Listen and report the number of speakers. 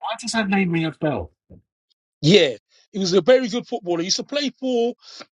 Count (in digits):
2